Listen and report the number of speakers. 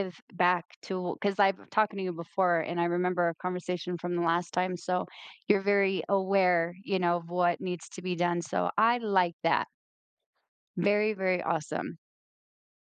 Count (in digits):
1